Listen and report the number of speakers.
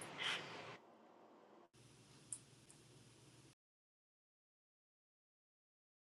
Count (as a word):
zero